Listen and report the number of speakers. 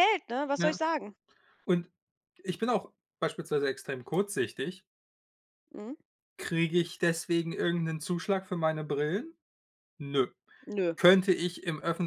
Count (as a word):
two